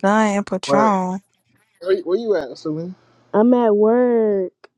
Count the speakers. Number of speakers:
3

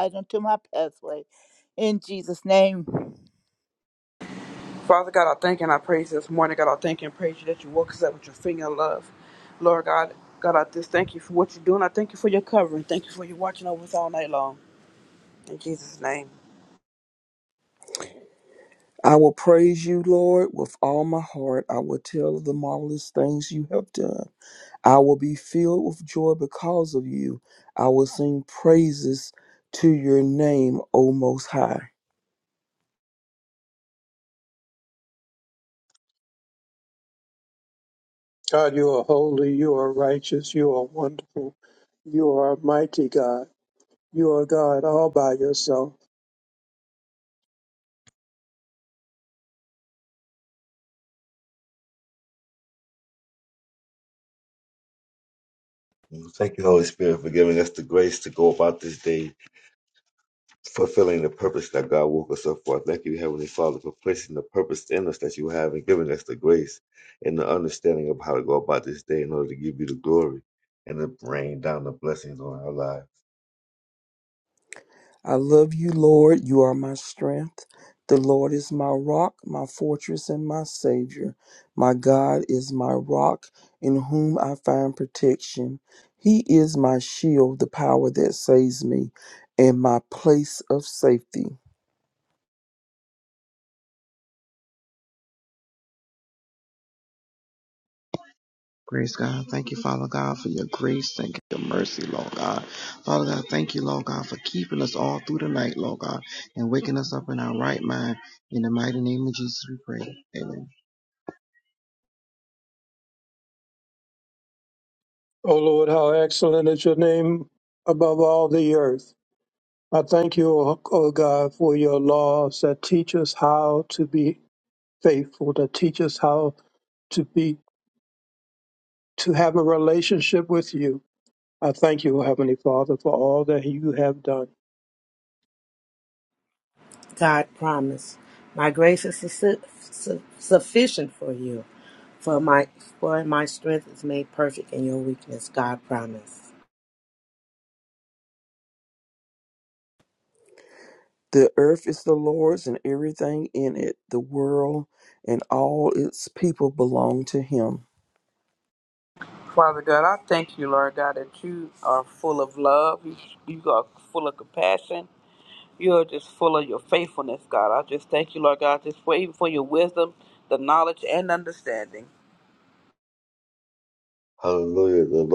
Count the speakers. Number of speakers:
7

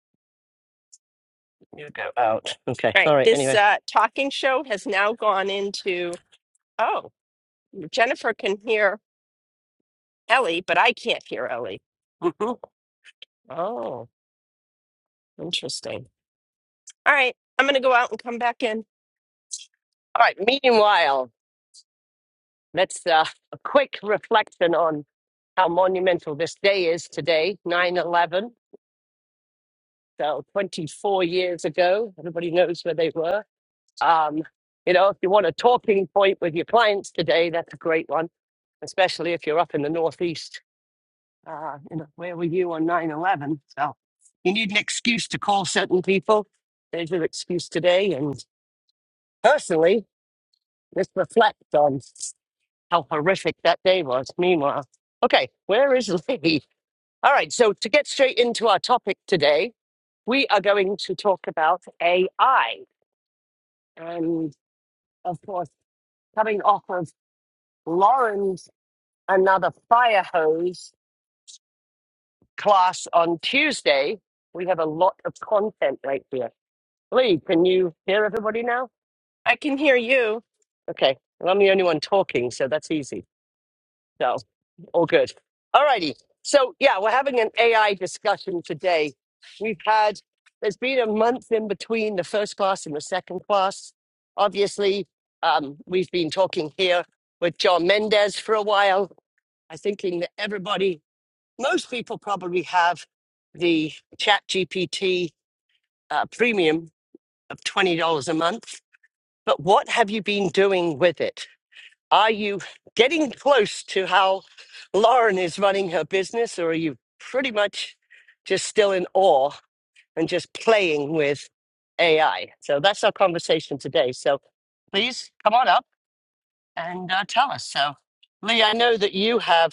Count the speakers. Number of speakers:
2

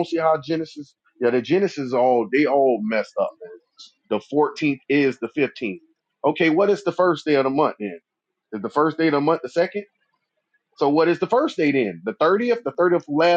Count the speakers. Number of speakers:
1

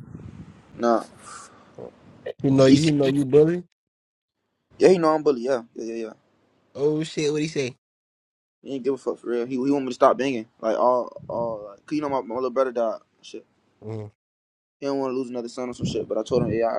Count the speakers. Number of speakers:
2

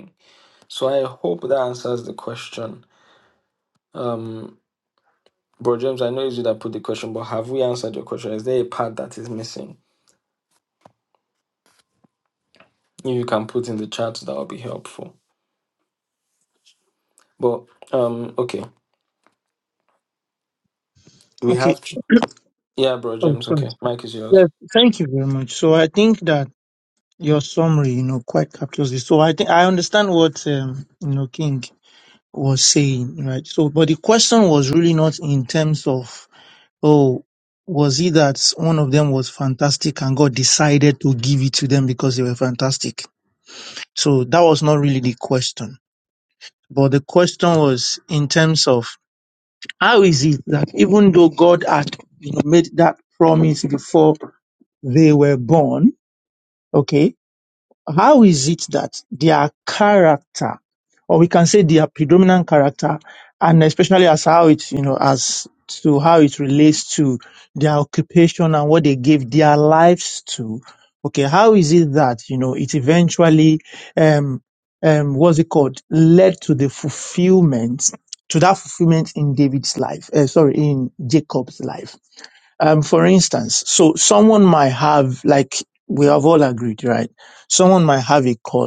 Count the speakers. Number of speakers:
2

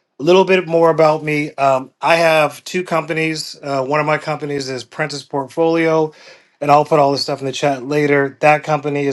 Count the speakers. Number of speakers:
1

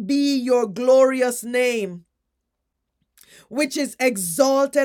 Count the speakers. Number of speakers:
1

